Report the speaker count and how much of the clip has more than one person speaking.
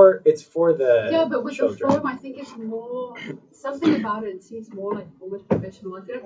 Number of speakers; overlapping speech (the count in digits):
2, about 17%